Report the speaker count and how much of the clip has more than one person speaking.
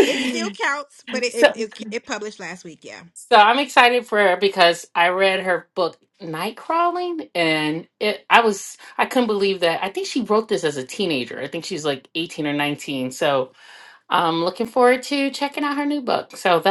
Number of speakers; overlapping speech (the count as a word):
two, about 1%